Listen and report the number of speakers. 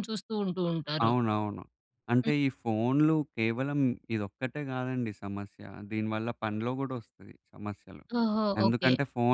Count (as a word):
two